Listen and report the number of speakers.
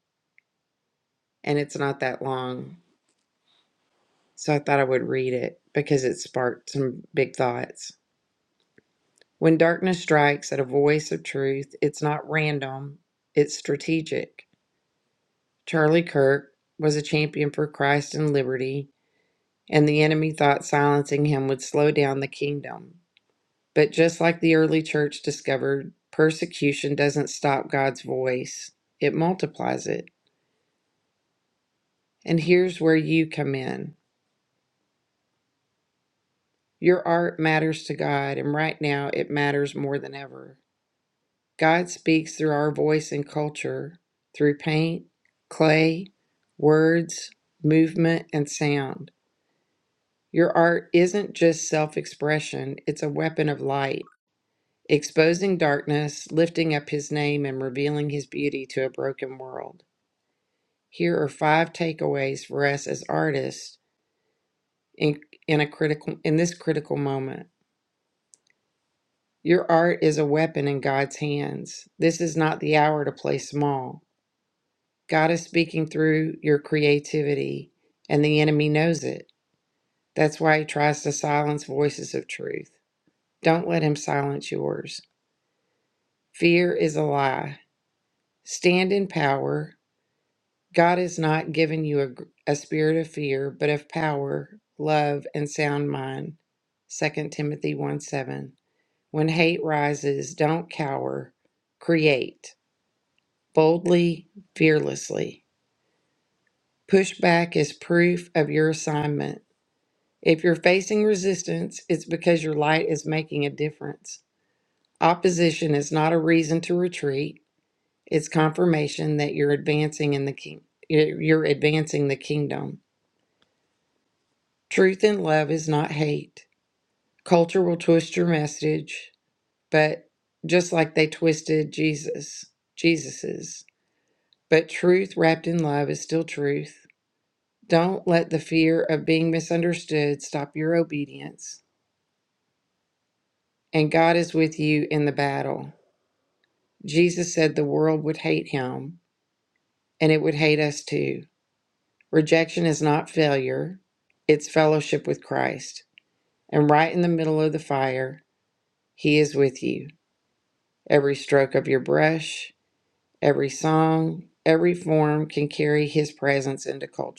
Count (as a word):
one